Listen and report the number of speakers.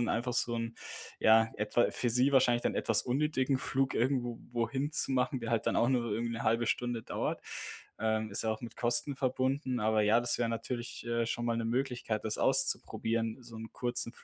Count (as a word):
one